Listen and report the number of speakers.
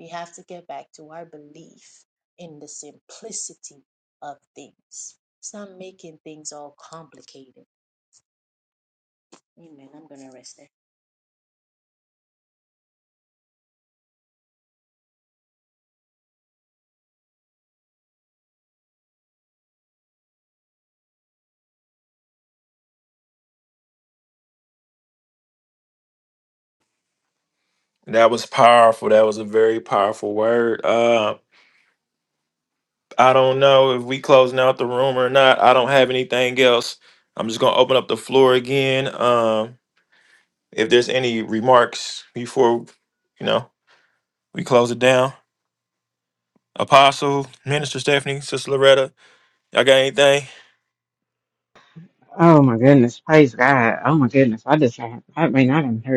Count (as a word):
three